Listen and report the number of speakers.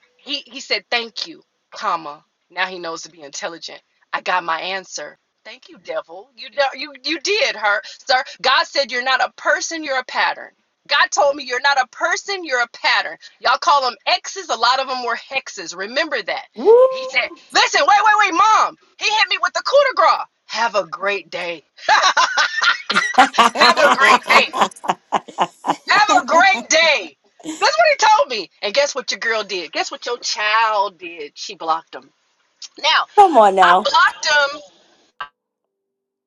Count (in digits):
2